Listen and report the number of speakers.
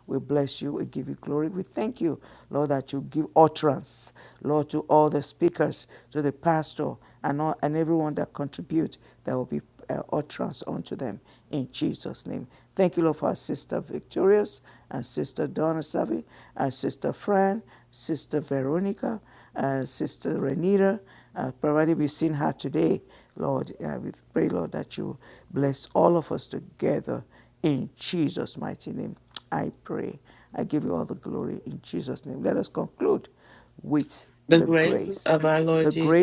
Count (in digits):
2